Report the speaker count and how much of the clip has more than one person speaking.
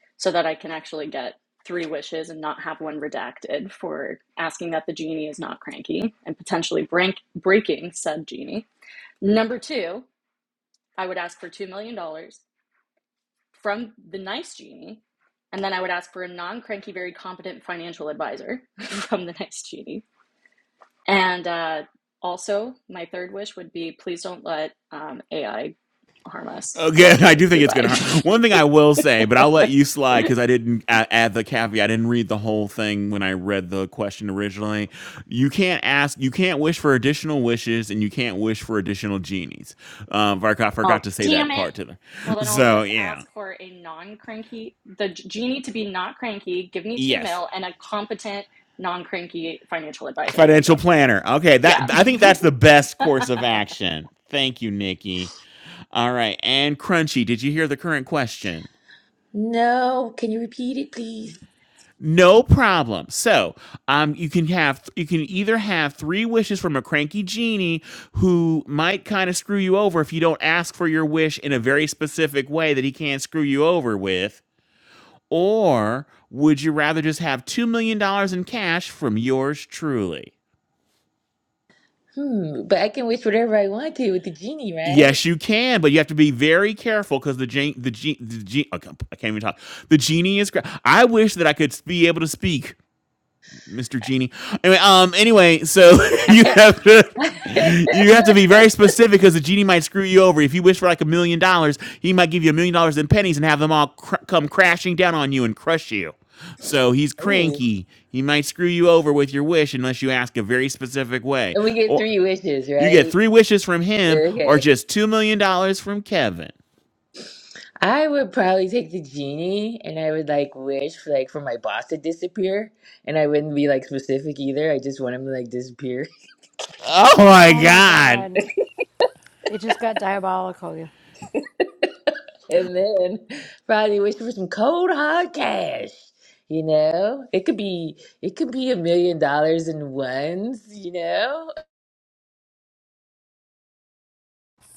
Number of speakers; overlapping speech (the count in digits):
4, about 5%